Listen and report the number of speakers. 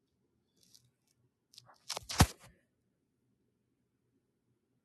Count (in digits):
0